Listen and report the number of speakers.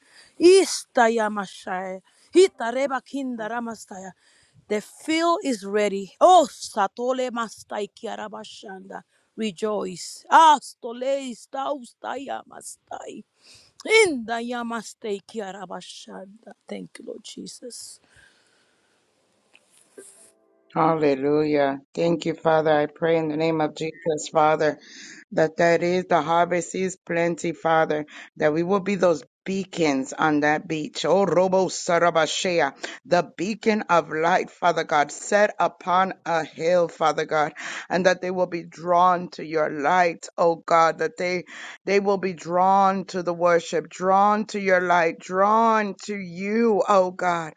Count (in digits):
2